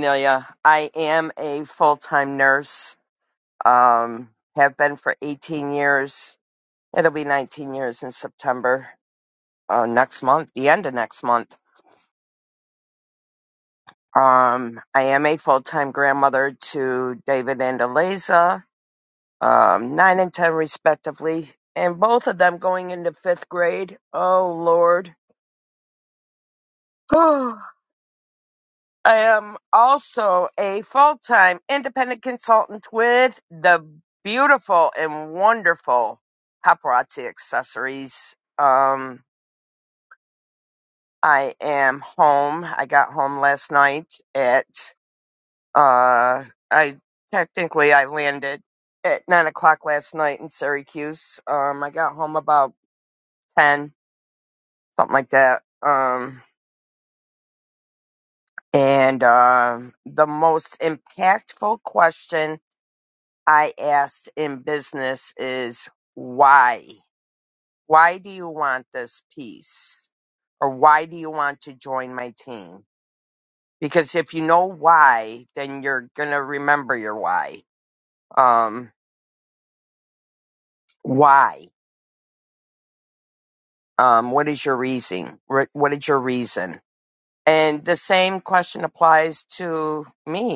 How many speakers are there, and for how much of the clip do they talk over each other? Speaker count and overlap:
1, no overlap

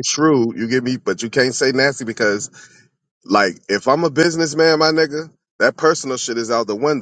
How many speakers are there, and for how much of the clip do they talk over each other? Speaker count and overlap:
1, no overlap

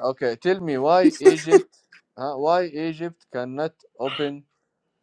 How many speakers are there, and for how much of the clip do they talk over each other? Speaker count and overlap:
1, no overlap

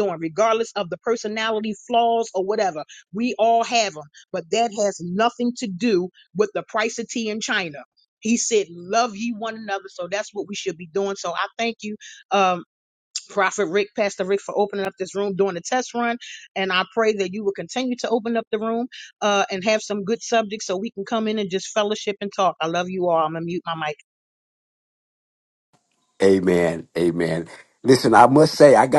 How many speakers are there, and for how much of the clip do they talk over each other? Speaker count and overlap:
2, no overlap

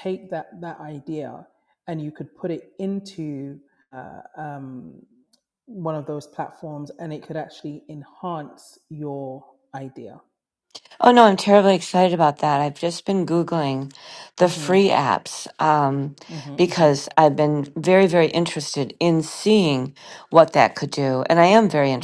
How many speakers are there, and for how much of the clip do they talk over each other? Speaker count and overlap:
2, about 4%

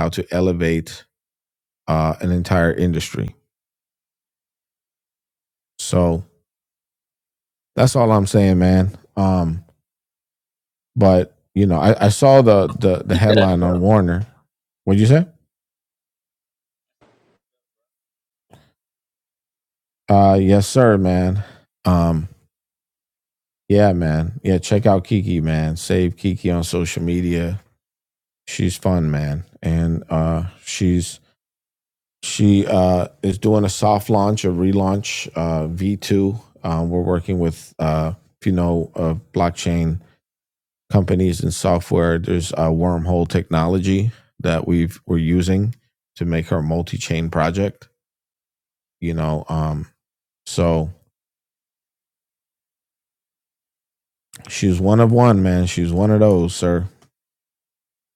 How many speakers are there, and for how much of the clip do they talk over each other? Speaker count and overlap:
1, no overlap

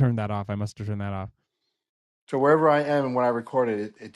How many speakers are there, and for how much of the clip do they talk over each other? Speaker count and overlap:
2, no overlap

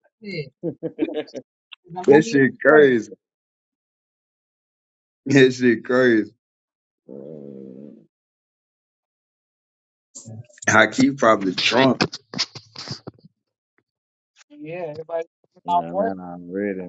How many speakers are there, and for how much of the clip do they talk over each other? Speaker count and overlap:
3, about 8%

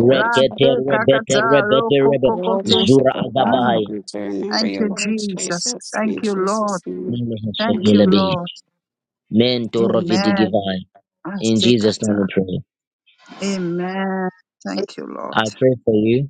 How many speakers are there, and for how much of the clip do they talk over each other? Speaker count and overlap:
3, about 53%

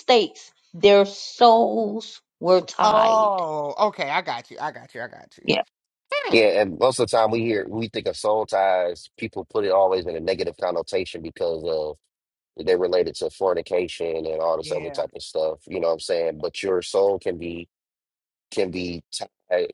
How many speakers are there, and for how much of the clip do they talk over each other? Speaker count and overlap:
3, about 5%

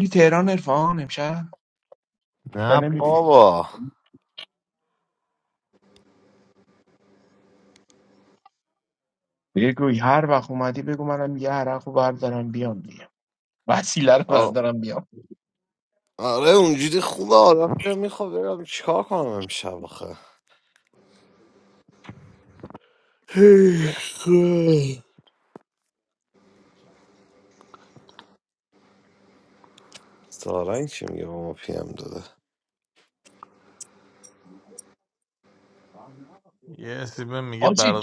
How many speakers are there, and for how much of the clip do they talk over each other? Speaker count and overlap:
3, about 2%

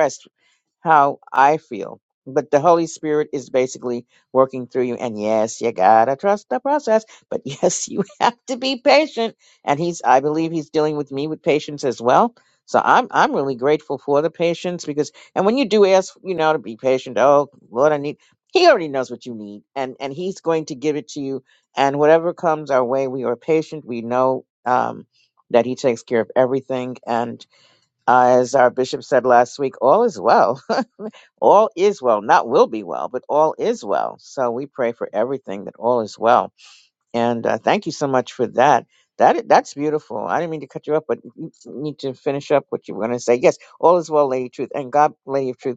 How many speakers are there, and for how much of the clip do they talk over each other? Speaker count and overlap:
1, no overlap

